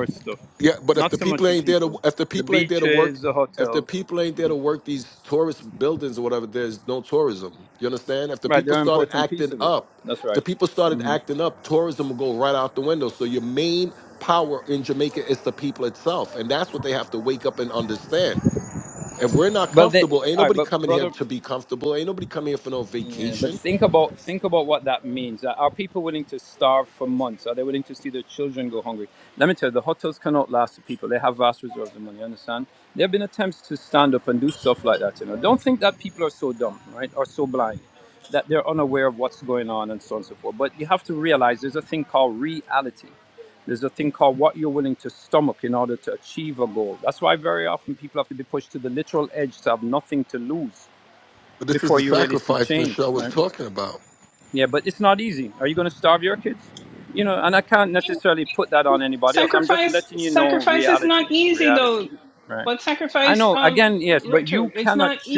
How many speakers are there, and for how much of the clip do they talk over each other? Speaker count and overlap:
three, about 18%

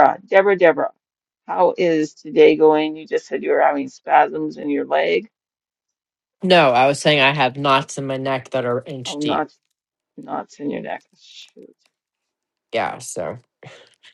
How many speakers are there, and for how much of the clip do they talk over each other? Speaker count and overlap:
two, about 2%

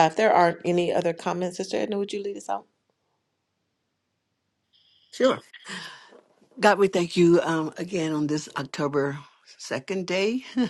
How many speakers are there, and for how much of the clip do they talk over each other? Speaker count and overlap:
two, no overlap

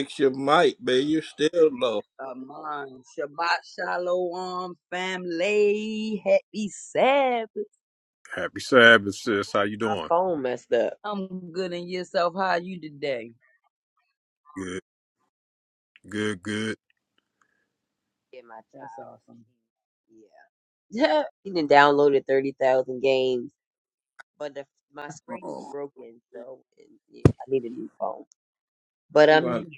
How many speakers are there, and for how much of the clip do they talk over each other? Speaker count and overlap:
four, about 3%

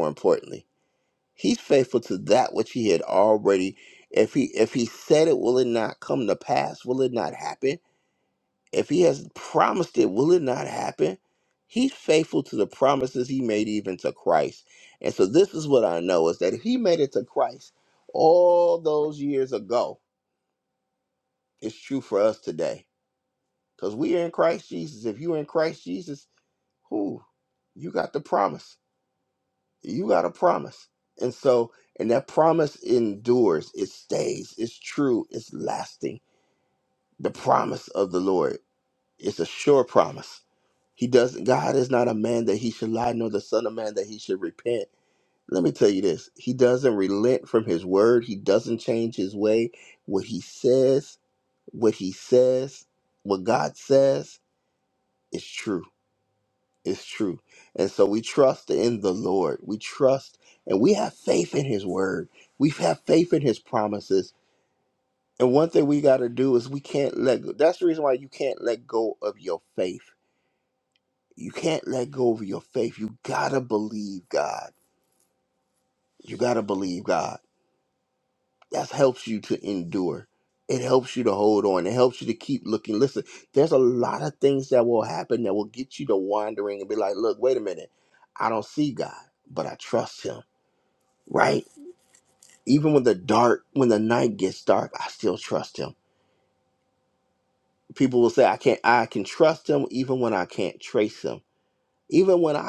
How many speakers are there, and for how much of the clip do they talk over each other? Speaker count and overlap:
one, no overlap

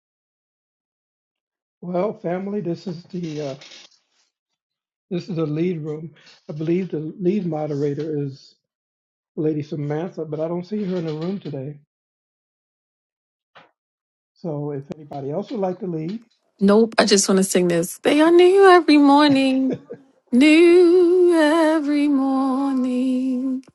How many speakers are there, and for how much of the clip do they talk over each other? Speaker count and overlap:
two, no overlap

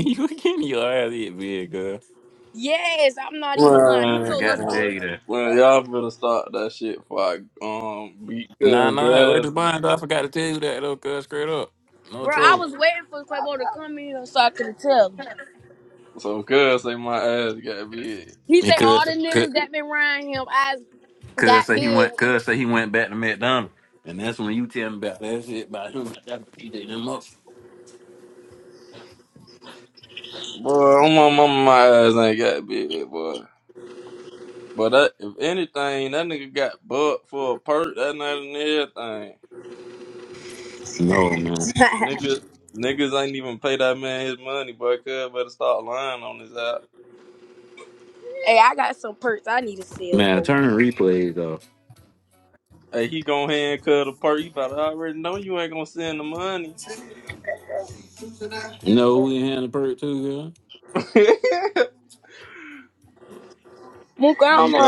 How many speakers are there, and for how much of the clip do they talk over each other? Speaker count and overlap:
three, about 9%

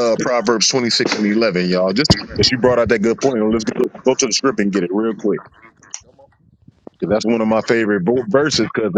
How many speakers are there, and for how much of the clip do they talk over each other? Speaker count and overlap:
one, no overlap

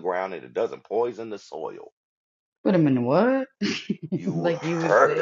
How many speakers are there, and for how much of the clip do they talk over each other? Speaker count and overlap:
two, about 20%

